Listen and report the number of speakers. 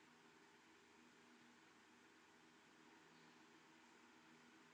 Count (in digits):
0